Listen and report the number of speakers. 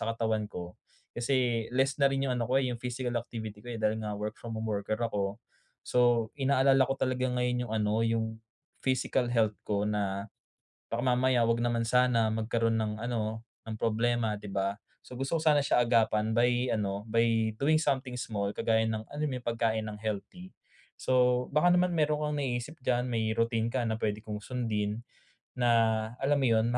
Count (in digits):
1